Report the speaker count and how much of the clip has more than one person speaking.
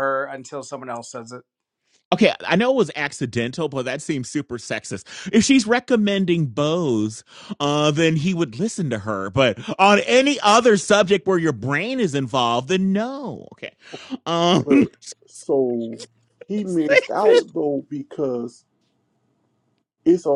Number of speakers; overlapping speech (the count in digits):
3, about 1%